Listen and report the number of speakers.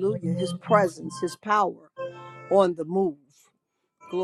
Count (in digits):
1